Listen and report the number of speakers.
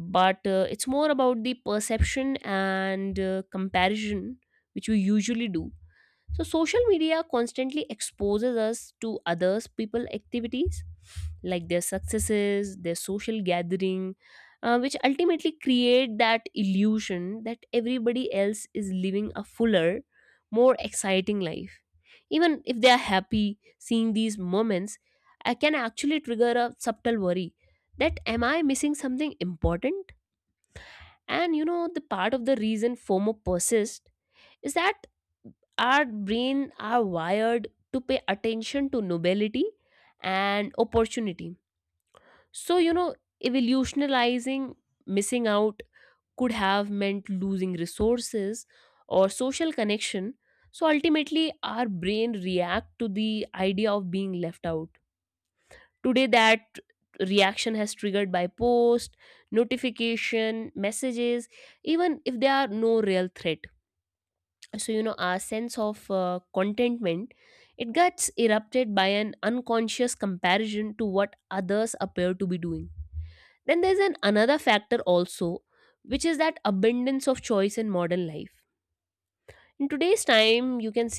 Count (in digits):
1